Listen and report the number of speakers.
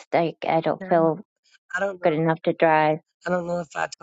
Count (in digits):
2